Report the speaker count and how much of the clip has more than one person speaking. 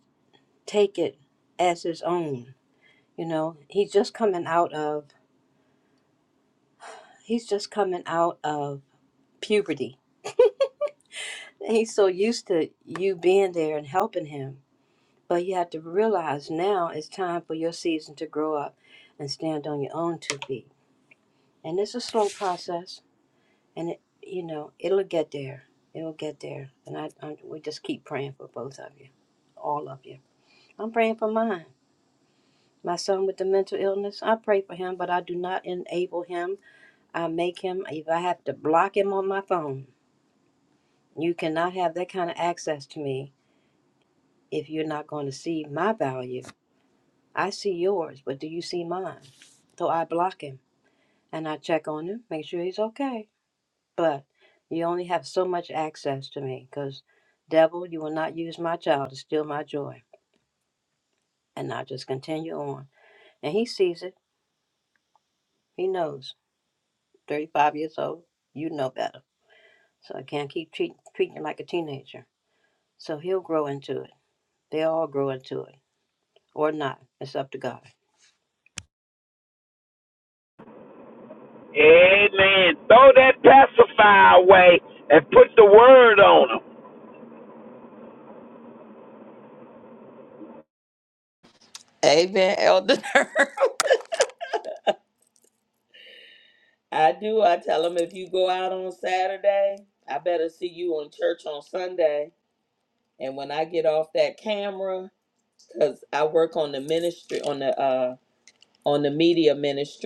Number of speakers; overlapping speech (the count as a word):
three, no overlap